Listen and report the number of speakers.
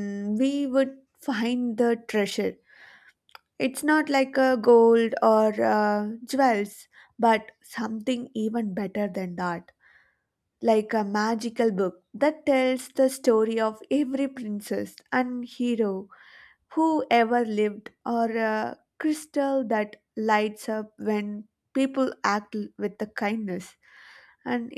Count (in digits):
1